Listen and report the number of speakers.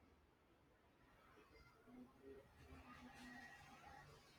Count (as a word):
zero